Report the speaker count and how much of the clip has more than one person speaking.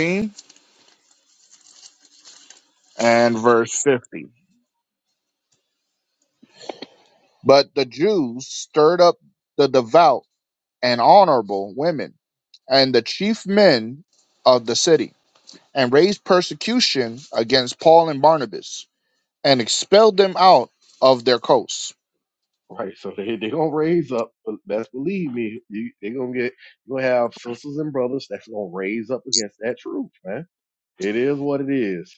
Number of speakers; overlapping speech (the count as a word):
two, no overlap